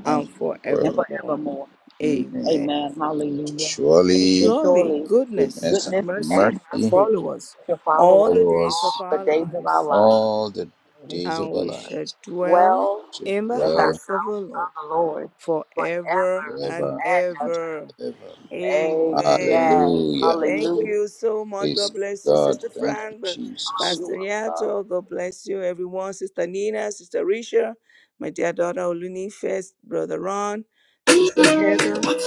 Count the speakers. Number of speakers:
3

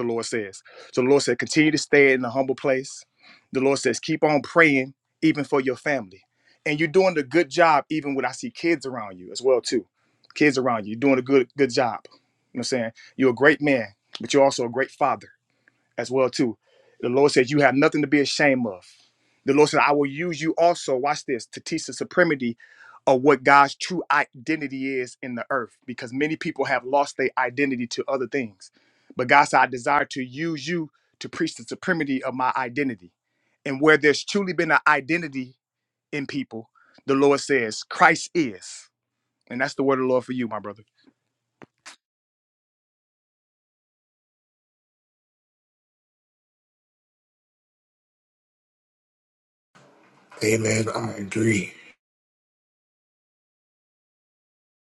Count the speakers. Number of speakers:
2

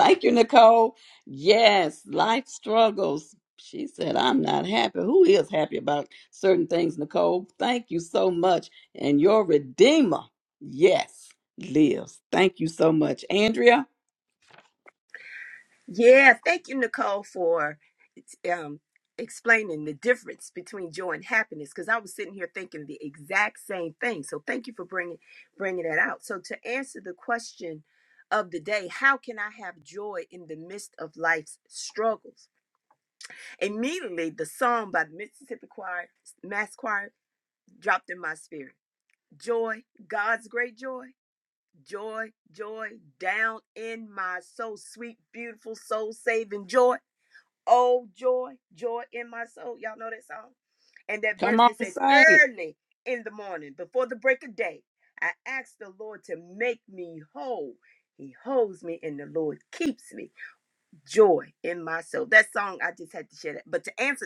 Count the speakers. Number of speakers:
2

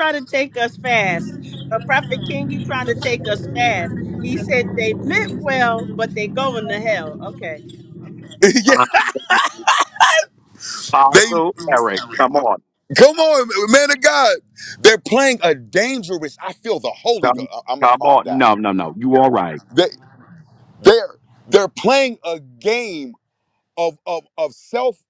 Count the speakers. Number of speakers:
3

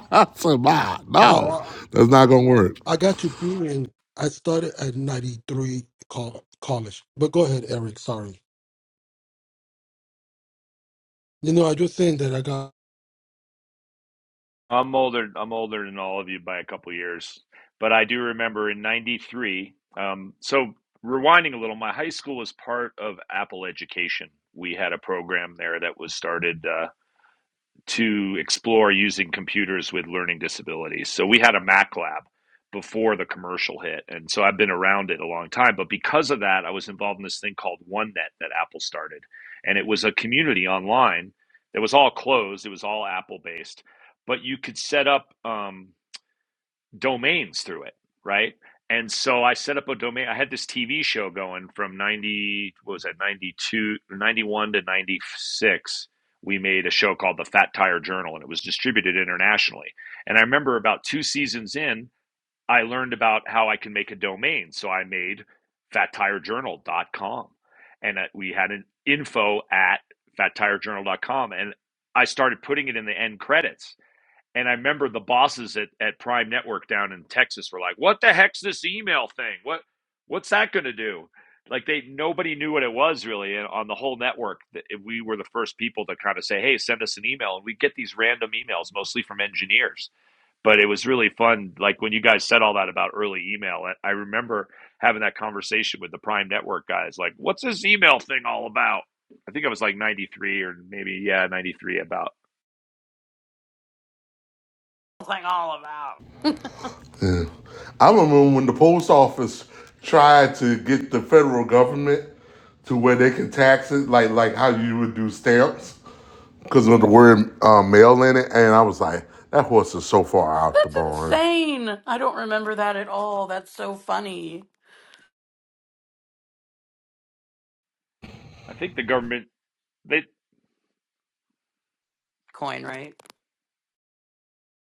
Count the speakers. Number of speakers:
4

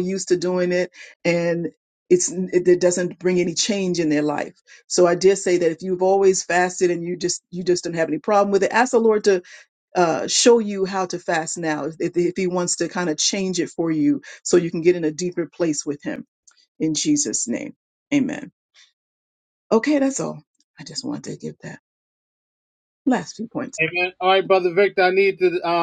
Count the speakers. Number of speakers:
2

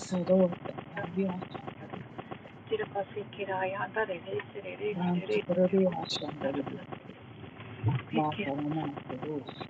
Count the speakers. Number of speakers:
2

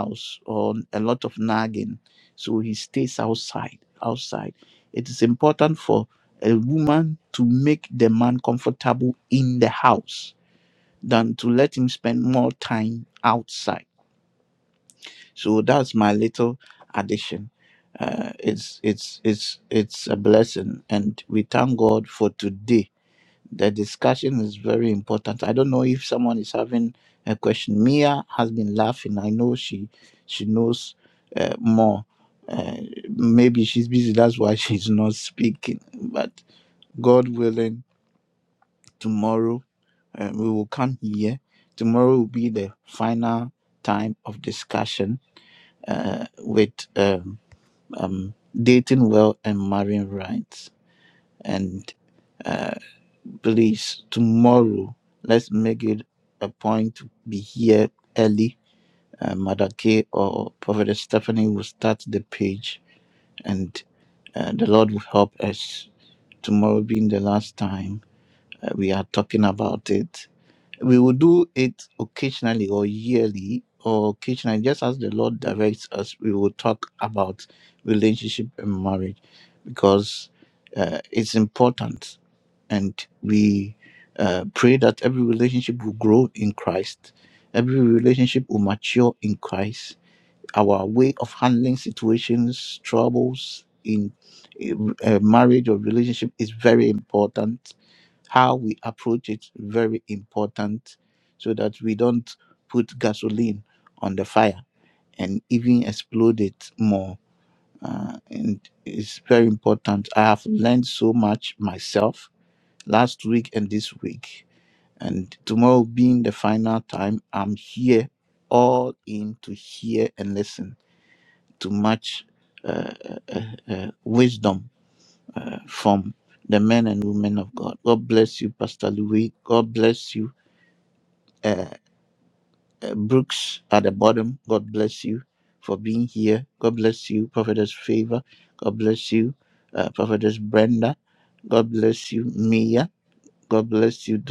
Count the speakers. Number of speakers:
1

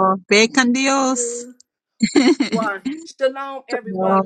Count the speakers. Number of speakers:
2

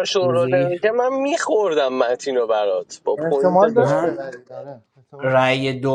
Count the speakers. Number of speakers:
3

